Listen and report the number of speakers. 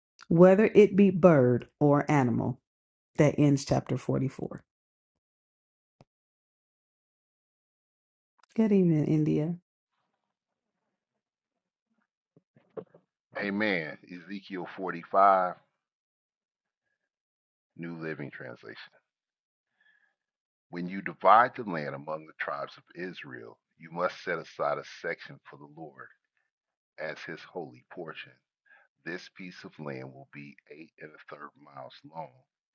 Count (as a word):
two